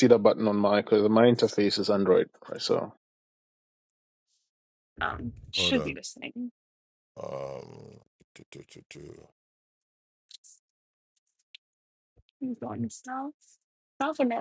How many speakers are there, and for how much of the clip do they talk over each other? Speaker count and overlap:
3, about 2%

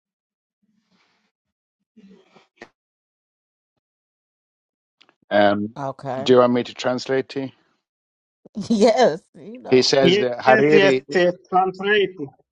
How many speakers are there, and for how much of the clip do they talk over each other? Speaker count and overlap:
3, about 8%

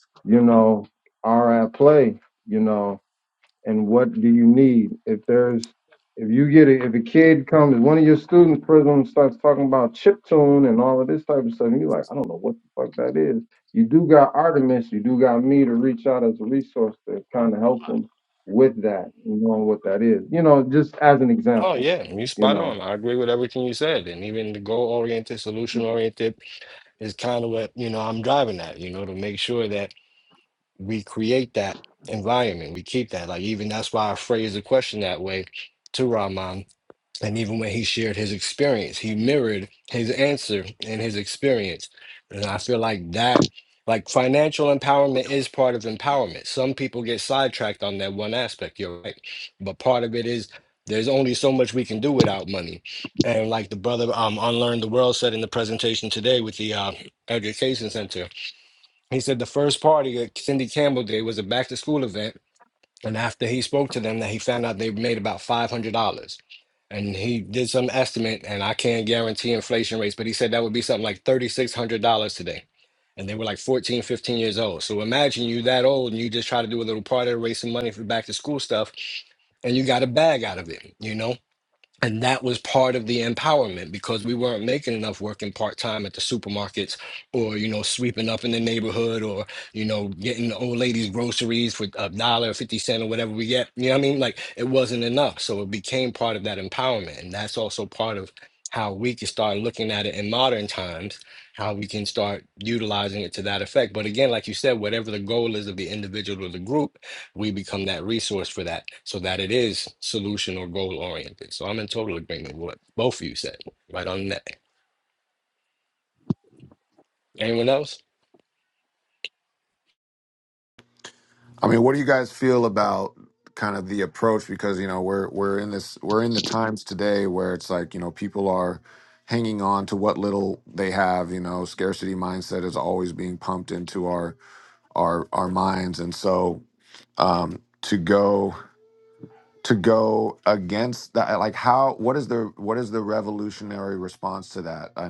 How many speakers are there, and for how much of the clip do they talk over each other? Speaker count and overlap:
3, under 1%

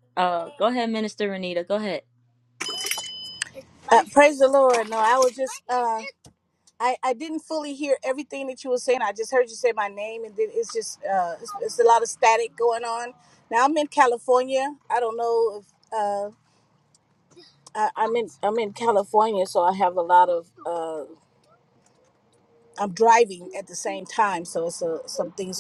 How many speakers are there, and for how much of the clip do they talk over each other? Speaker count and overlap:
2, no overlap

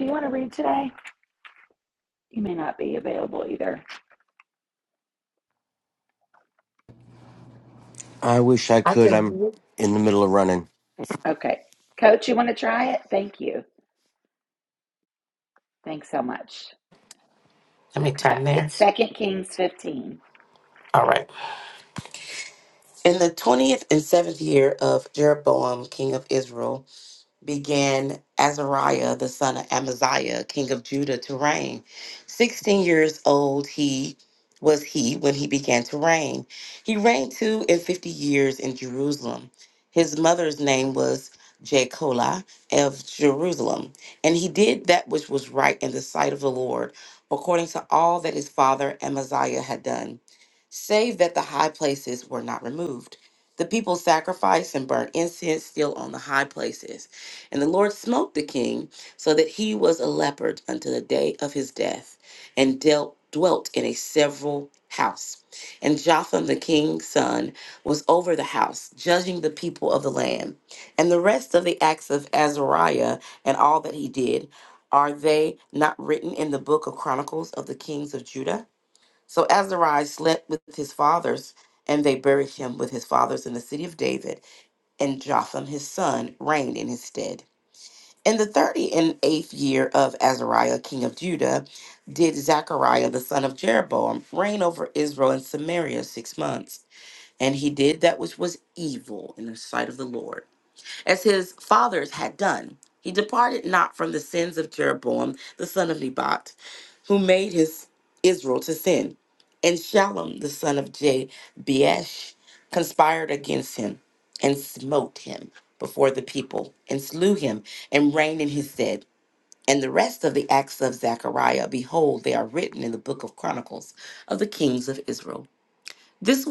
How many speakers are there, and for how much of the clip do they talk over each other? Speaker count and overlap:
3, about 1%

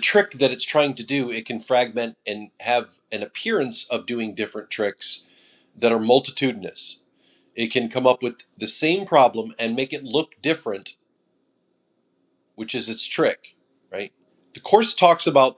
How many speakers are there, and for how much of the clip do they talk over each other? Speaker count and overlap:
1, no overlap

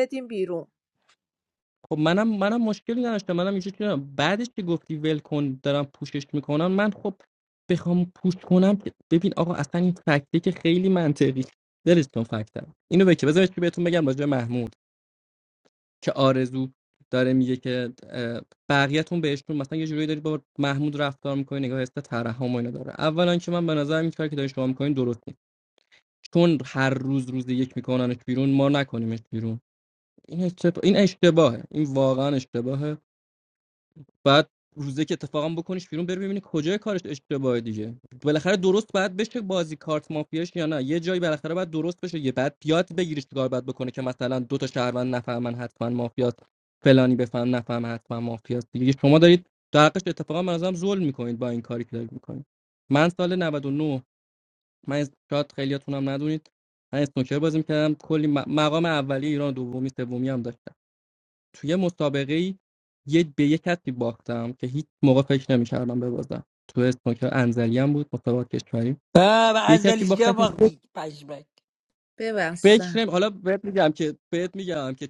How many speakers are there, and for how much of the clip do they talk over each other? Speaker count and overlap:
3, about 2%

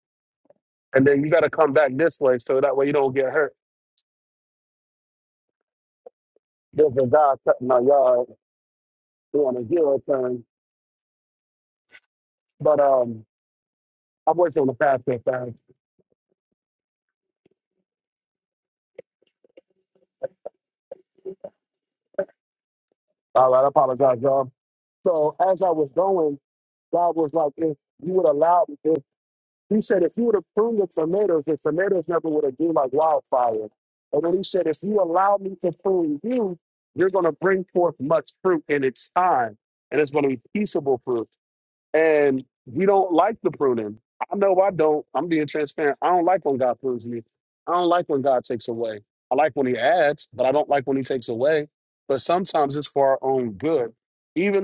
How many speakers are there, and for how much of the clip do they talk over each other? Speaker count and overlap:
1, no overlap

